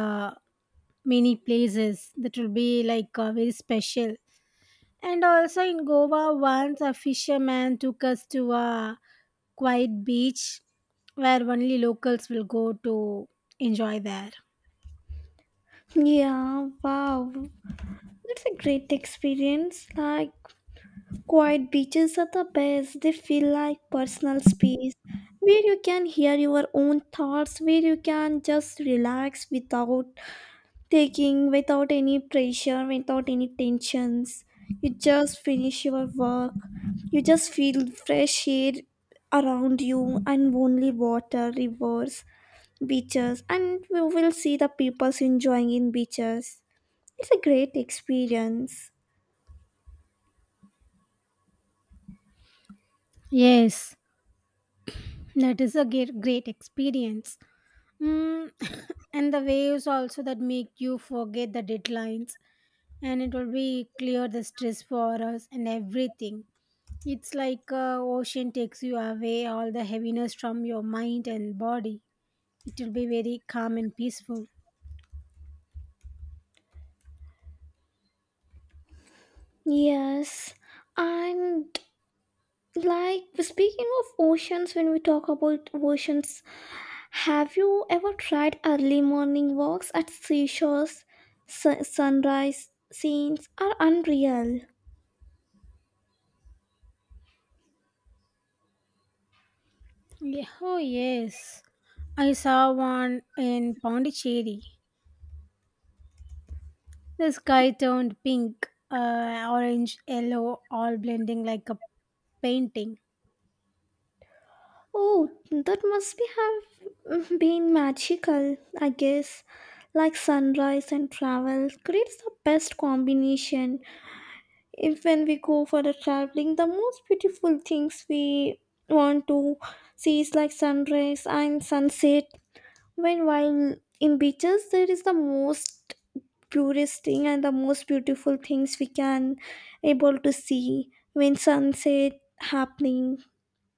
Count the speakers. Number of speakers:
2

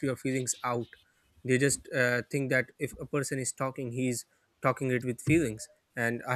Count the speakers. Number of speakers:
1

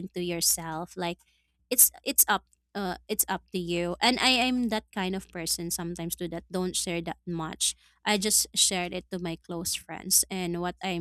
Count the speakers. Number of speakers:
1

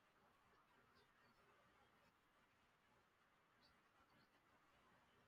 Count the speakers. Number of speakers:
0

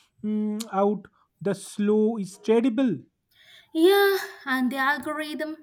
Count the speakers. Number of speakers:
2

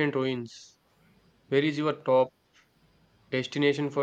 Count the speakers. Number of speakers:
1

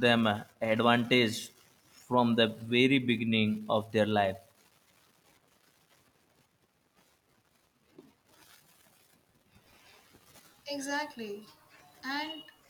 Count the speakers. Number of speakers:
2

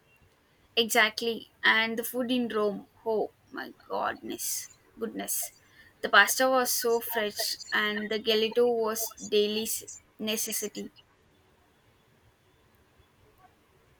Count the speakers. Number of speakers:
1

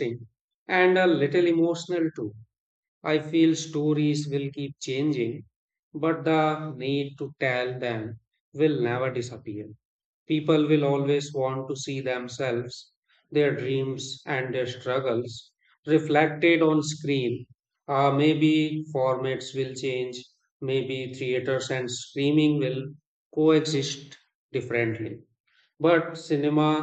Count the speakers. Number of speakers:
1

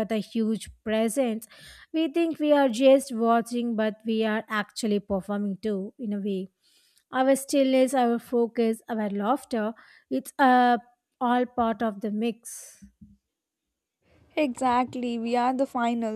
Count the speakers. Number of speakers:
2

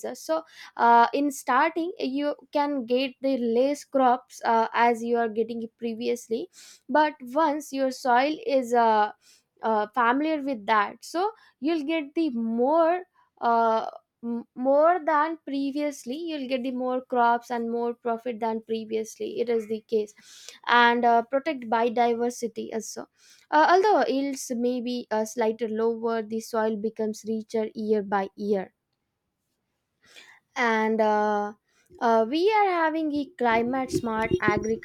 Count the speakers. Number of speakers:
1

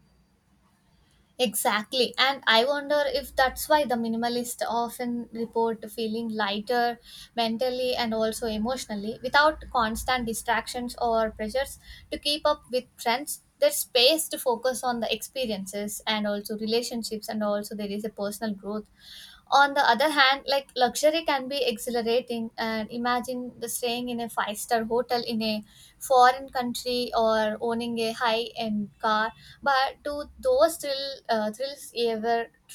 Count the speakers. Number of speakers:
1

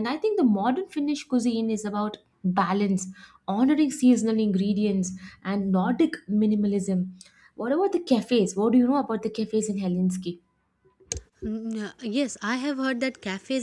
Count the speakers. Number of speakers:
2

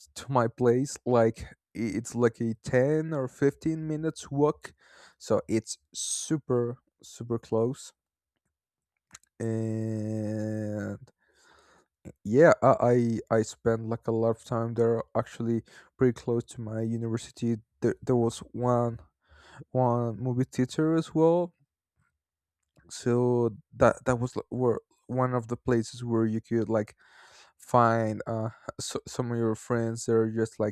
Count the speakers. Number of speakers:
1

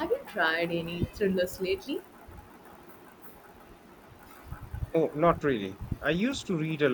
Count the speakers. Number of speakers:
2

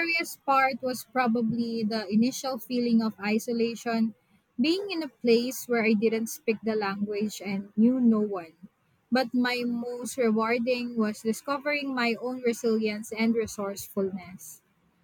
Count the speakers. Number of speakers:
1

